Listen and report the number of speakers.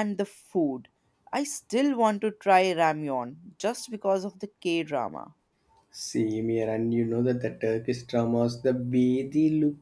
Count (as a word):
two